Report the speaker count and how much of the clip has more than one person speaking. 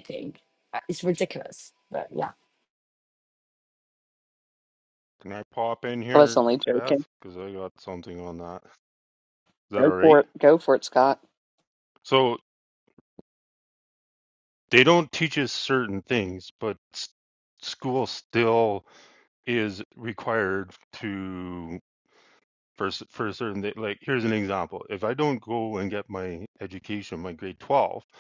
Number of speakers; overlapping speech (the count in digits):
3, about 5%